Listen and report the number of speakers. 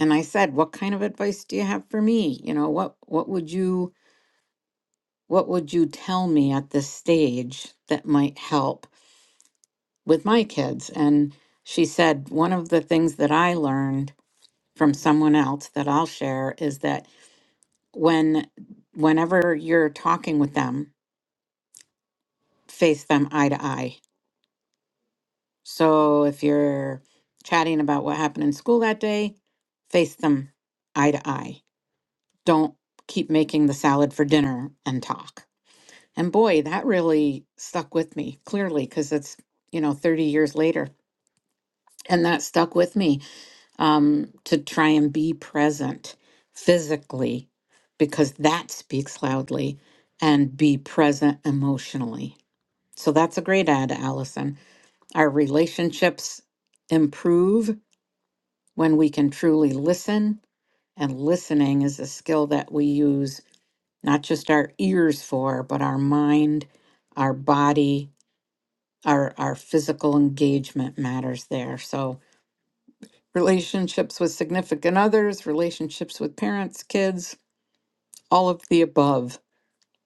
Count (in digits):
1